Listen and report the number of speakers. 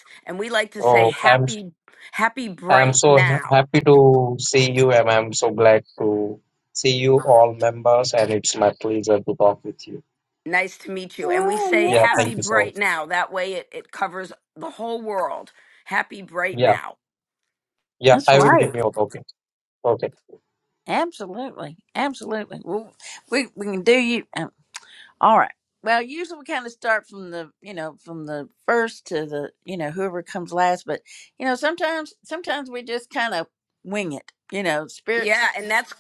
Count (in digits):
3